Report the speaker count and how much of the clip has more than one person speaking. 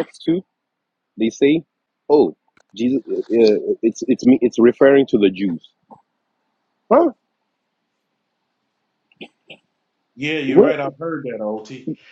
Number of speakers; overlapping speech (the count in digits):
2, about 2%